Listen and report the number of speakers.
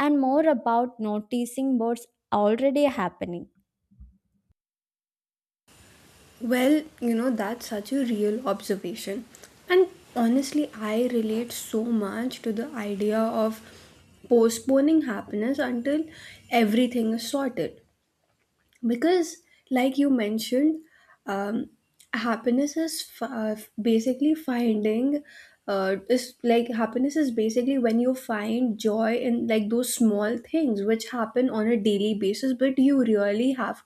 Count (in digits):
2